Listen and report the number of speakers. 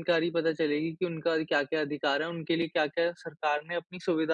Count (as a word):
one